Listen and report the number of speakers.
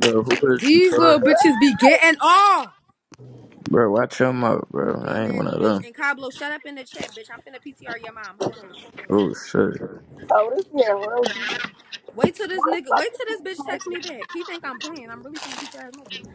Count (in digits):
3